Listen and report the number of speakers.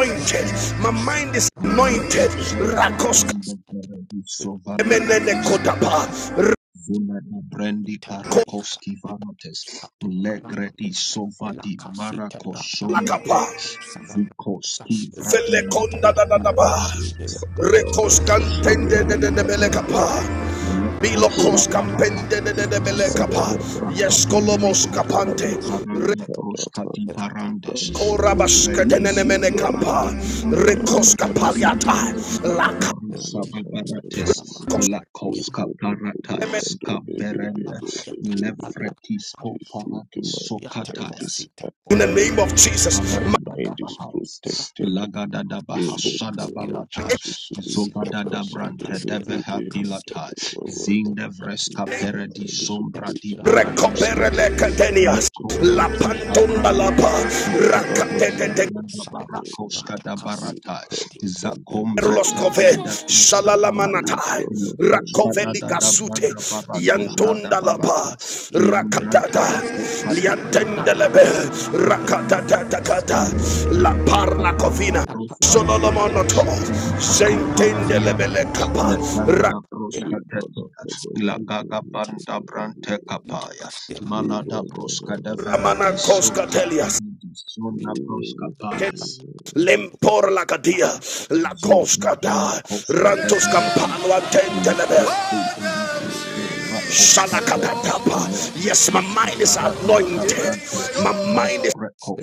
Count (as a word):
four